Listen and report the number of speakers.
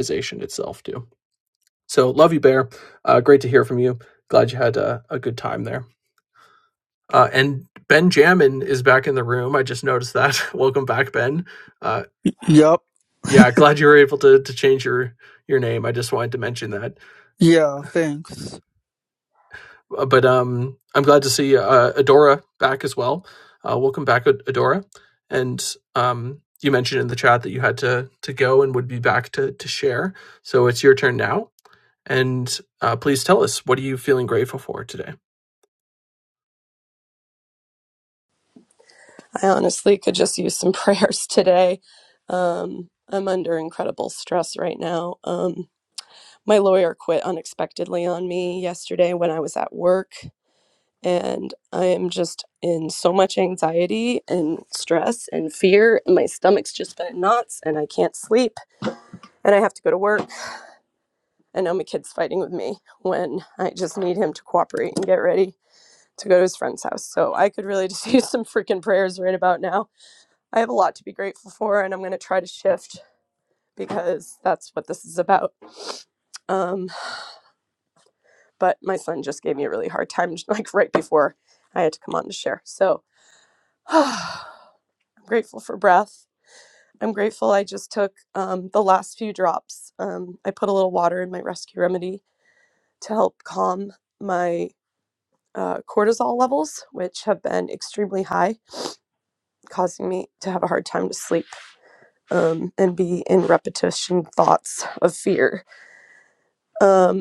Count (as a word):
three